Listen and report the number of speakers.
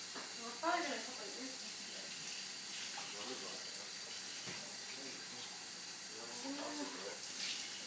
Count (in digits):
2